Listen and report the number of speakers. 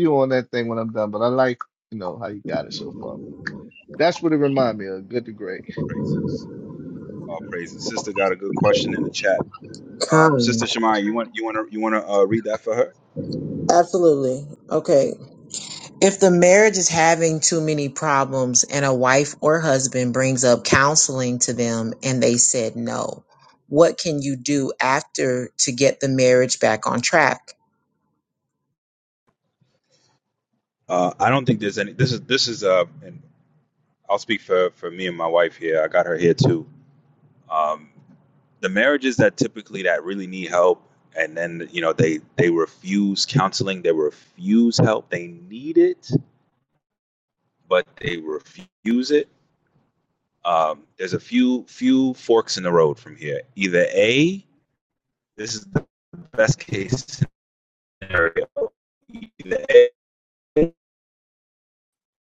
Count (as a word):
three